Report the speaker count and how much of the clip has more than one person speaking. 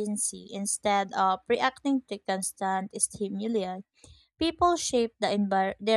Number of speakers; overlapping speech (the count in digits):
1, no overlap